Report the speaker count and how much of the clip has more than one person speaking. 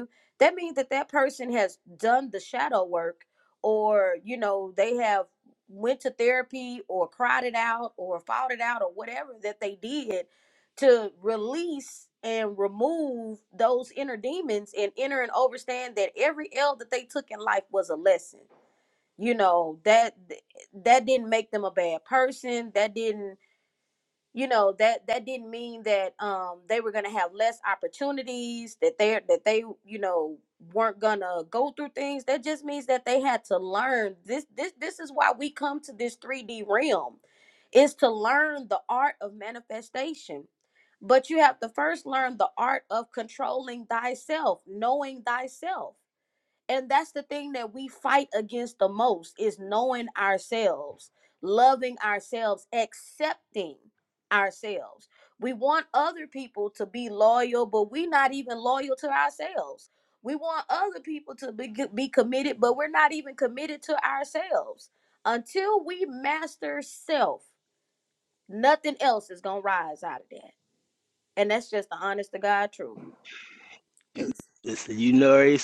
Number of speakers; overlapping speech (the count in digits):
2, no overlap